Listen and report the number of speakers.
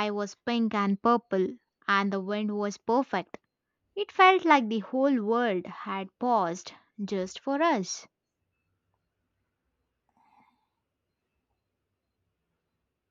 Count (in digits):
1